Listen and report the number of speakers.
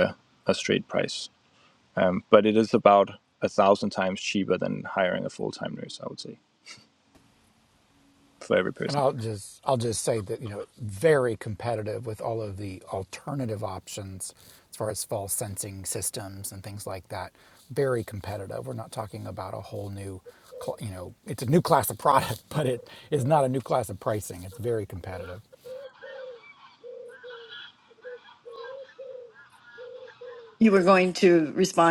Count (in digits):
3